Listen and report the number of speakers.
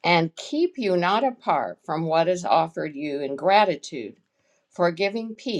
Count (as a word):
one